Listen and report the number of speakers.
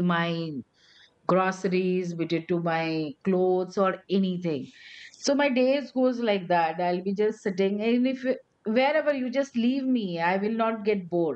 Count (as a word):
one